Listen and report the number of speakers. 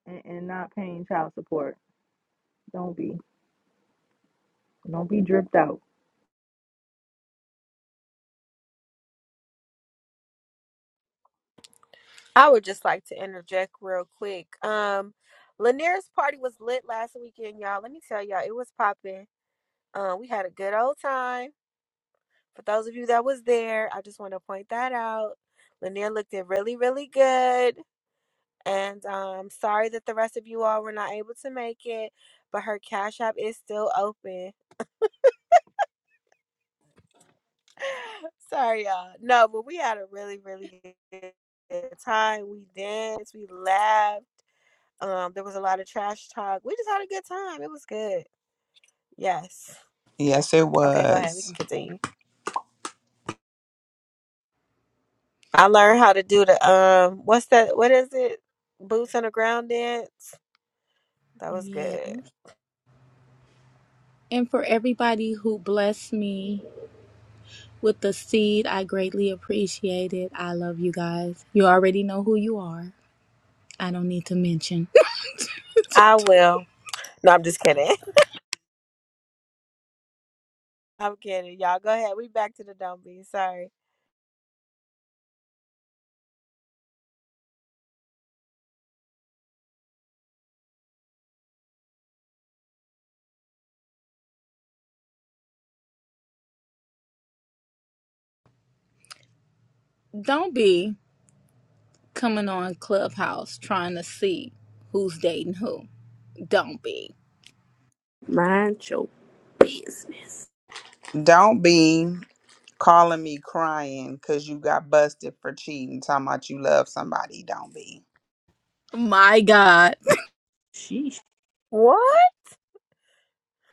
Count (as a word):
five